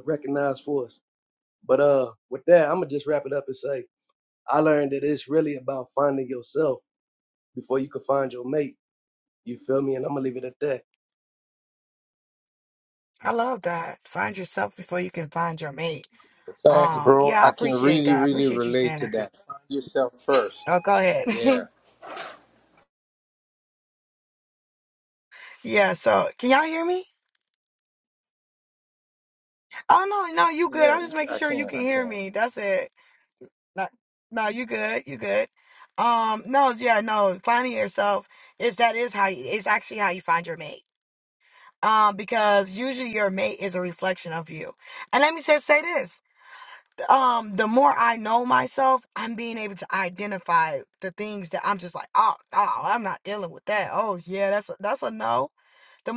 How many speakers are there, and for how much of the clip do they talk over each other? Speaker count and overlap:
3, about 7%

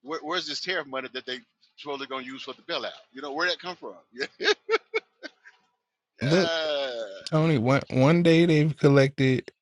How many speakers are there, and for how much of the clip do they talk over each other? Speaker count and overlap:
2, about 3%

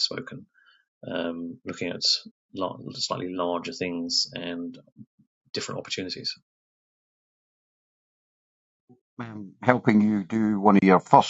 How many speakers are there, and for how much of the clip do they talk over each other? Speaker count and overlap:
2, no overlap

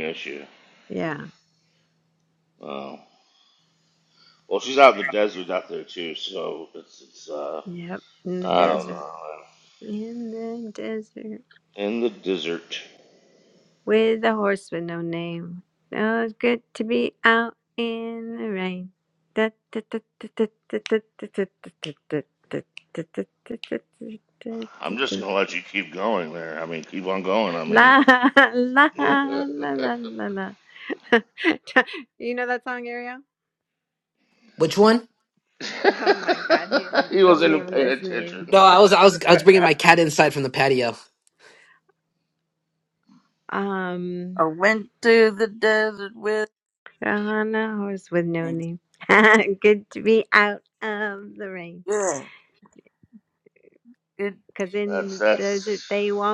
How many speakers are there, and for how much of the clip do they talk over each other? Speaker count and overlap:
4, about 7%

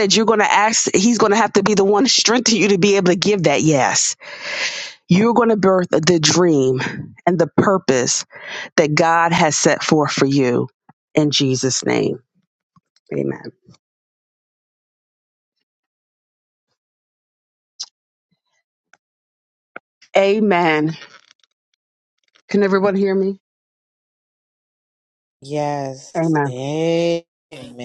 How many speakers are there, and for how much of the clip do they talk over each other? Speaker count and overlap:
2, under 1%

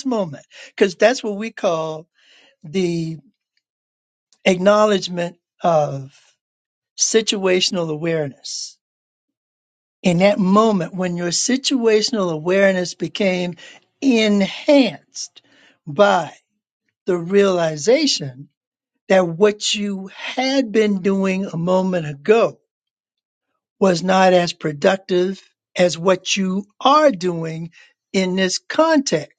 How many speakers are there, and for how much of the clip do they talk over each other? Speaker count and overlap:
1, no overlap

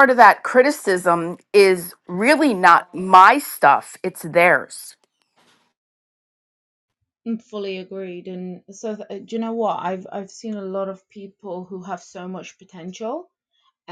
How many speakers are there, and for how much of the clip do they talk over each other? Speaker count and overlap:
2, no overlap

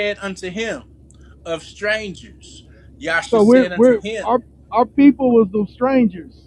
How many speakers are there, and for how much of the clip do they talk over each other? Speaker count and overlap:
2, about 15%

